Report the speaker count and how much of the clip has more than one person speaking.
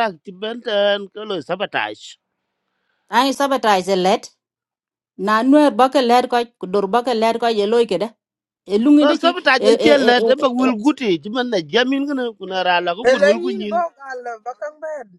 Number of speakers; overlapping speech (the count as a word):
three, about 16%